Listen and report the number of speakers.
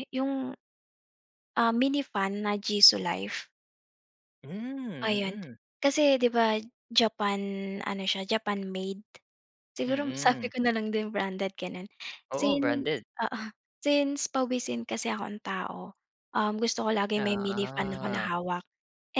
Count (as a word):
two